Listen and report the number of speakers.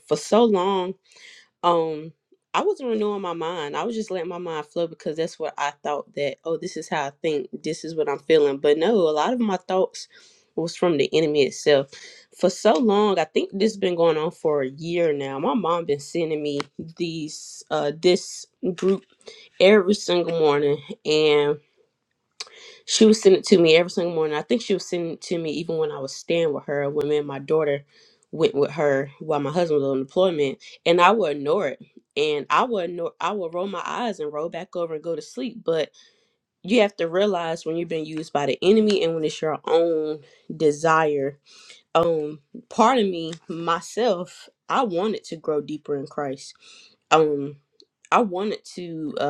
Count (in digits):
1